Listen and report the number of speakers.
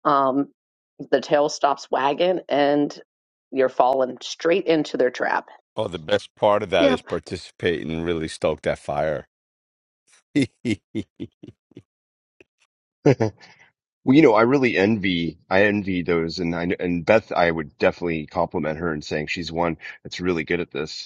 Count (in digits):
3